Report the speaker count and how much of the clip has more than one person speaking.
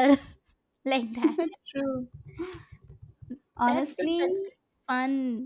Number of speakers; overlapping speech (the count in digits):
2, about 12%